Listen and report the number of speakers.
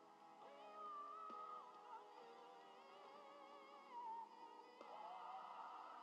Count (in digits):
0